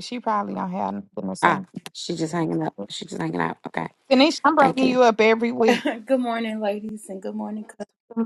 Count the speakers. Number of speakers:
3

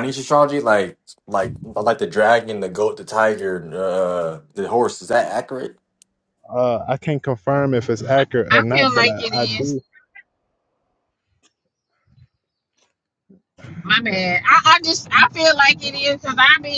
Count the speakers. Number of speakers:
3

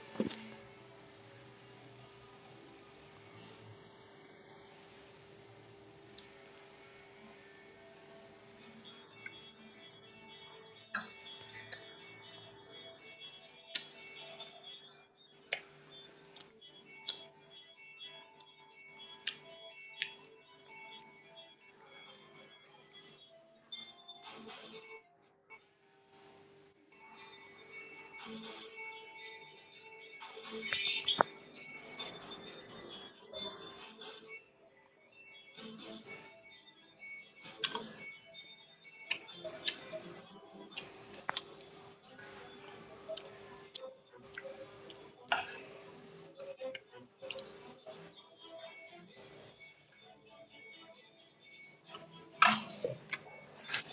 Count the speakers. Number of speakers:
0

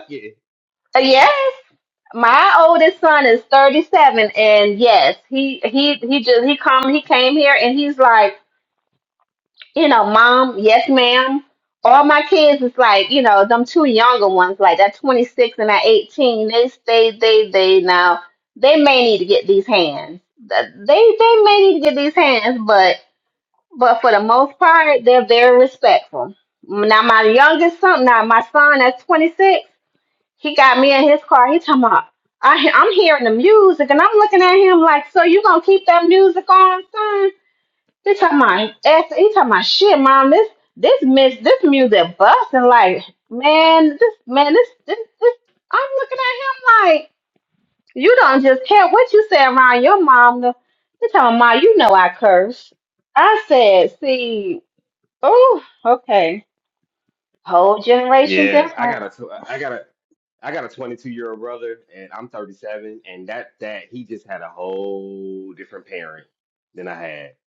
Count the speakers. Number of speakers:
2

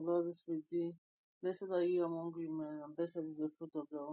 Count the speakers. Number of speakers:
1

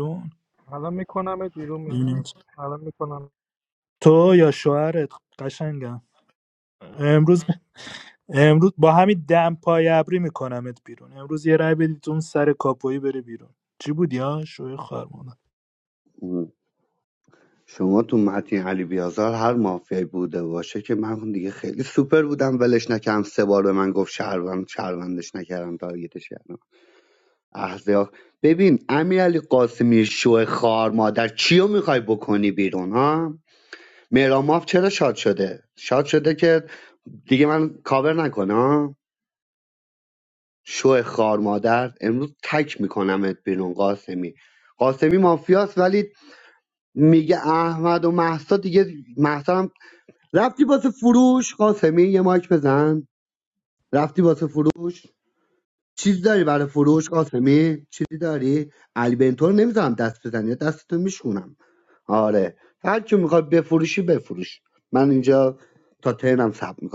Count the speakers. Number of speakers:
3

